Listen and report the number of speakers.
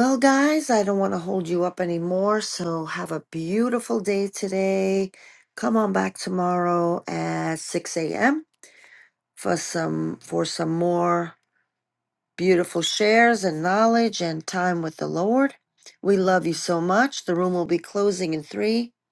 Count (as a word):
one